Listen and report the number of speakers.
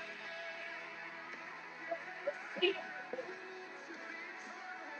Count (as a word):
zero